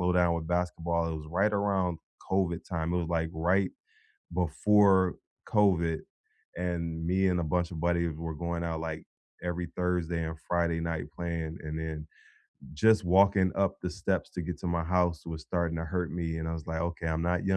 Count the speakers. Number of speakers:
1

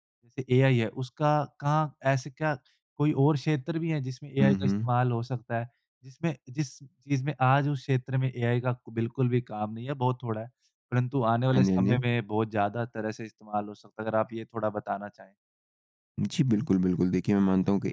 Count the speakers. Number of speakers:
2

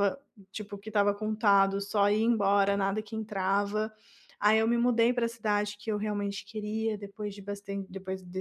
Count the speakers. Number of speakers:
1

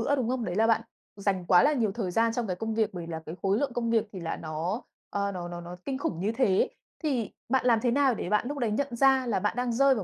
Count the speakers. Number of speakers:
1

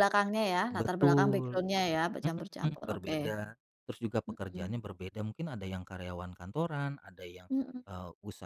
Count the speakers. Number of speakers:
2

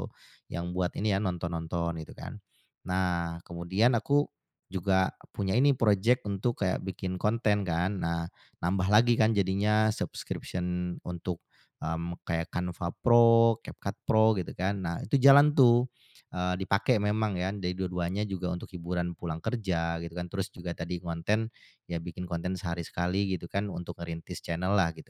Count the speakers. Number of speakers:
1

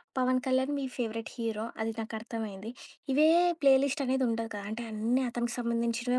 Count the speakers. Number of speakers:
1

